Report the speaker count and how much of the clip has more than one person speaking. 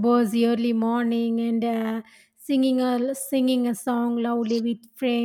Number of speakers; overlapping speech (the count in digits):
1, no overlap